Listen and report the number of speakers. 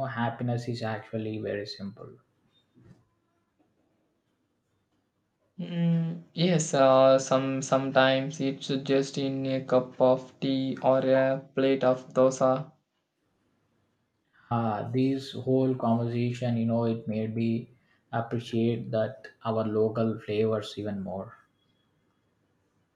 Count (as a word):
two